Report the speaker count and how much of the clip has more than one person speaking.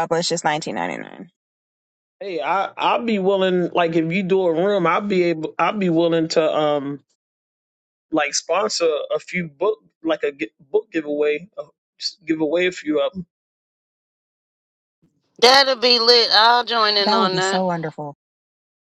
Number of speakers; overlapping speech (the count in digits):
3, about 3%